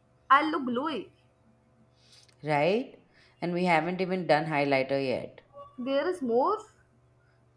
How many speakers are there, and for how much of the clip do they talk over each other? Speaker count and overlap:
2, no overlap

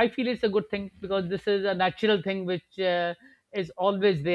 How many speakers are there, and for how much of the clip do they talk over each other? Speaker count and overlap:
1, no overlap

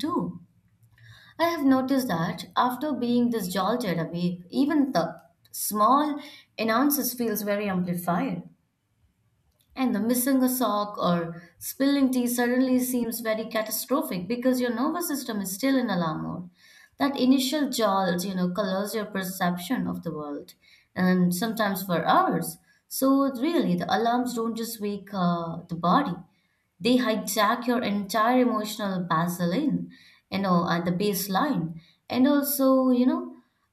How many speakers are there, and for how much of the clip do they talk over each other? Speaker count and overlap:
1, no overlap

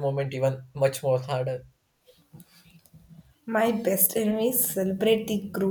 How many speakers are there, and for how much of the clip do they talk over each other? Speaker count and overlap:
2, no overlap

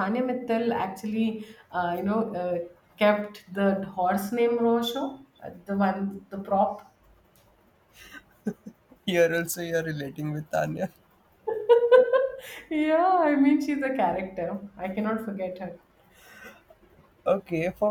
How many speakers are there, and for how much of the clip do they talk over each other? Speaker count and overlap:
2, no overlap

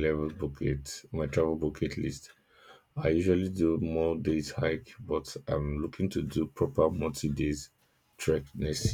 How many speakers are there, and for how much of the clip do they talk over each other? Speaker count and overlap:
1, no overlap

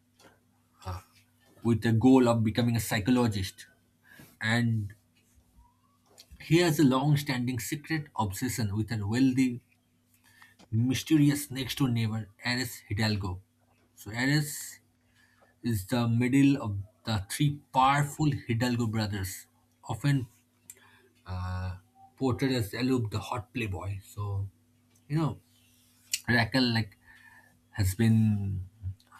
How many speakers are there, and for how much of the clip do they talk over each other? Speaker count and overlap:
1, no overlap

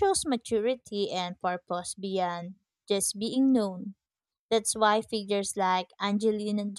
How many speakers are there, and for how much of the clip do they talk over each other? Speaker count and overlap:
1, no overlap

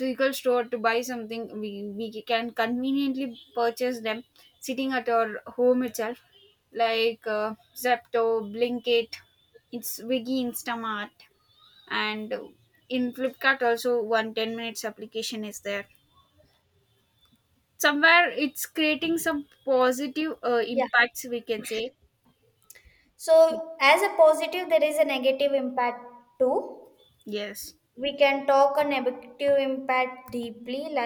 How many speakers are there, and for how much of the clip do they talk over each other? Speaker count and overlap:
2, under 1%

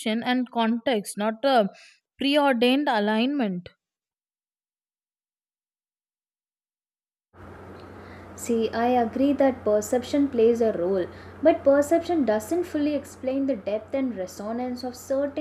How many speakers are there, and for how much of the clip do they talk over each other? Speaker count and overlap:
2, no overlap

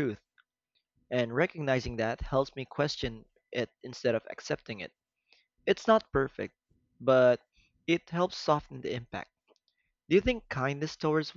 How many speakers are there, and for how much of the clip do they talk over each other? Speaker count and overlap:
1, no overlap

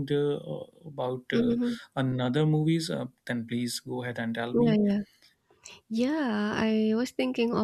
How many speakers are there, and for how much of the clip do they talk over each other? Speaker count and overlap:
2, about 6%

